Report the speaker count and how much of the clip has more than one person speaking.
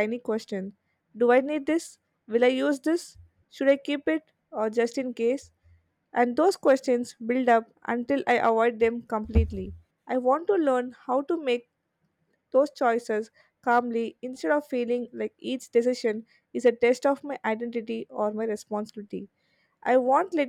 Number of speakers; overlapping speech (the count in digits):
1, no overlap